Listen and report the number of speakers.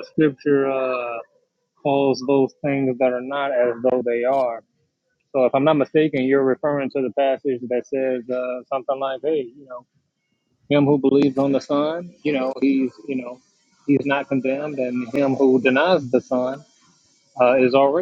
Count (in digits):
1